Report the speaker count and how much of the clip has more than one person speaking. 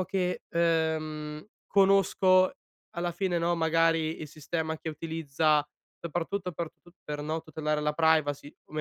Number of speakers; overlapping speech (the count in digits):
1, no overlap